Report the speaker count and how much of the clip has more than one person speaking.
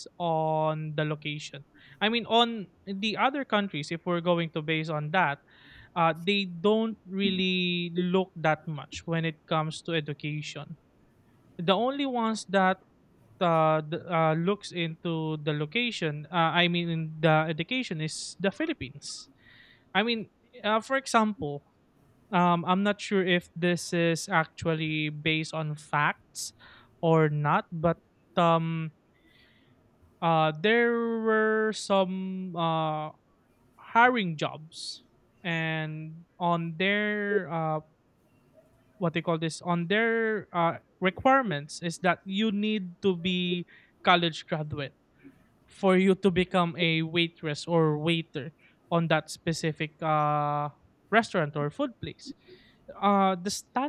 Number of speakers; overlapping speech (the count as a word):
one, no overlap